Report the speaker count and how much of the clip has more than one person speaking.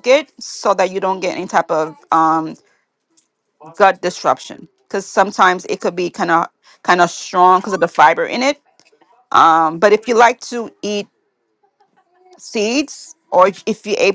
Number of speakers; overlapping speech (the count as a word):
one, no overlap